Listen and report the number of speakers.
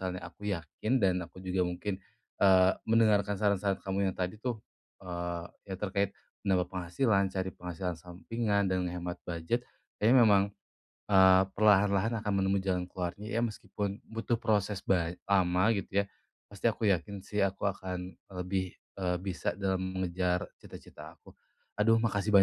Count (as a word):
one